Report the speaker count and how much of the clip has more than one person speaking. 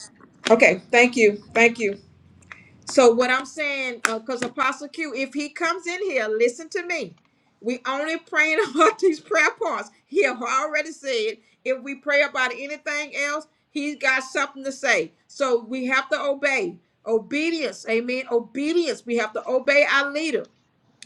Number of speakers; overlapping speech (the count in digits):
1, no overlap